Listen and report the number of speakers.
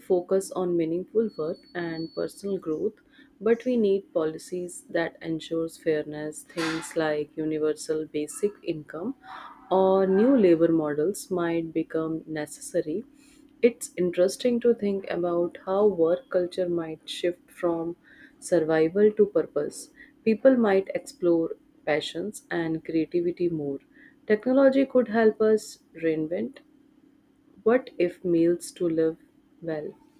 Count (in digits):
1